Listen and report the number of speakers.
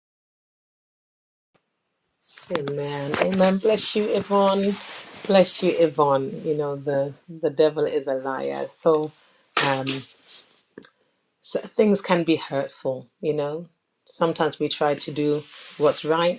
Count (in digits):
1